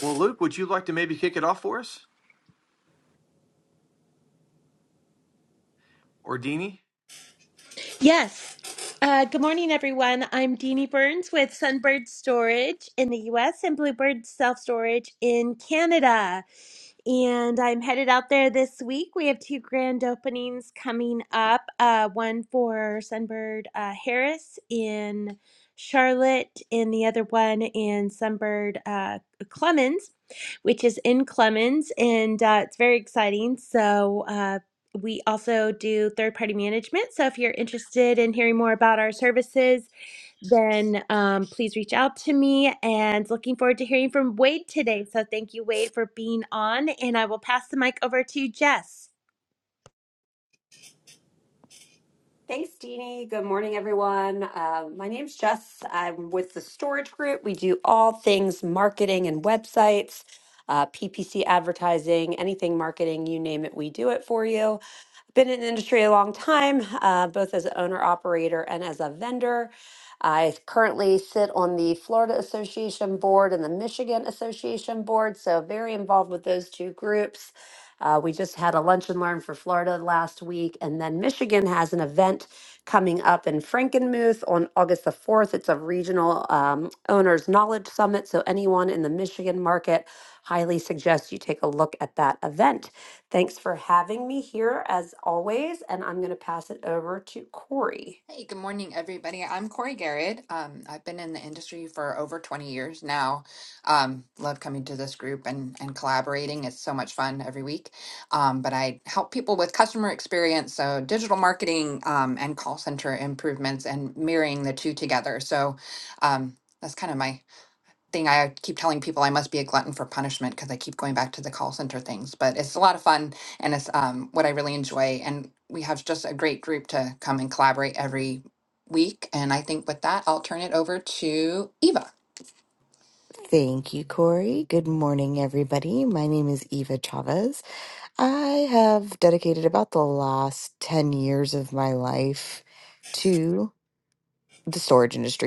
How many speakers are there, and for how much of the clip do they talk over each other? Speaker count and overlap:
five, no overlap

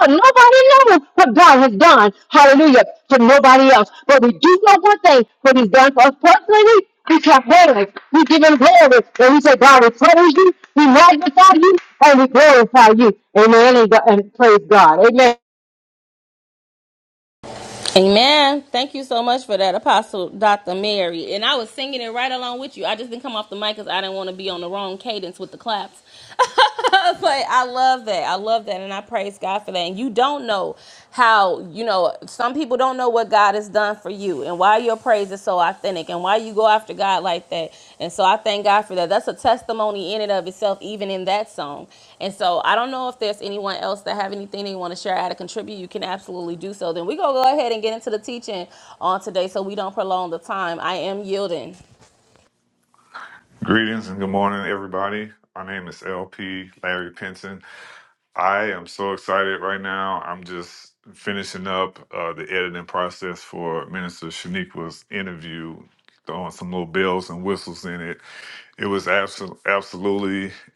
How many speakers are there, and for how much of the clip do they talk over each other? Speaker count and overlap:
three, no overlap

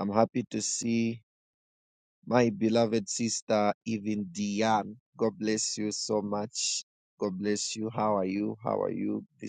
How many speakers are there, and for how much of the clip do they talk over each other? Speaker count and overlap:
one, no overlap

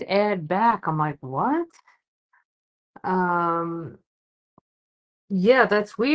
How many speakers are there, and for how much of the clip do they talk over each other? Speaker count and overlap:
one, no overlap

